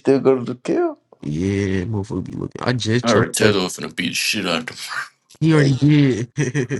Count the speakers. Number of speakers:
3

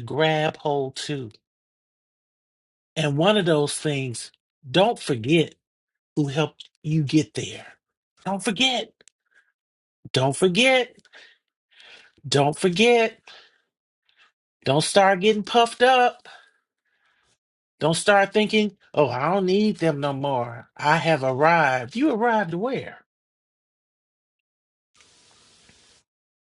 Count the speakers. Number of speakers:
1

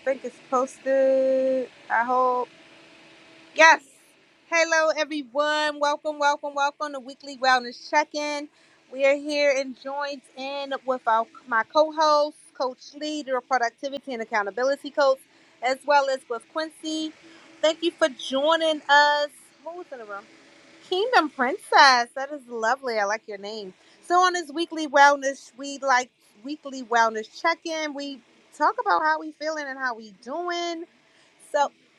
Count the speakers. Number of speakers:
1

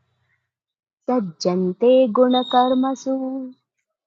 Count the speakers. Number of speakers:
1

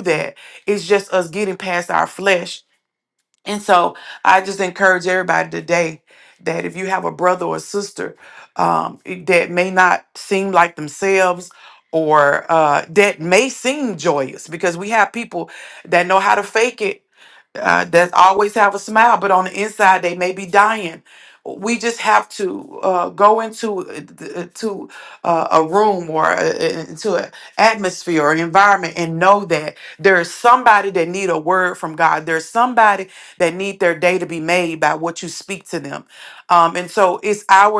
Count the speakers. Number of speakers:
1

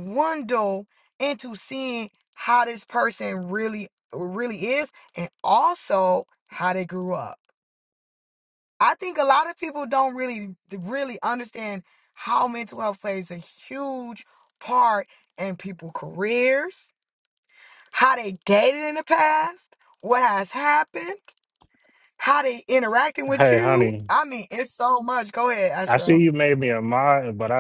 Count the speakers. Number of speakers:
2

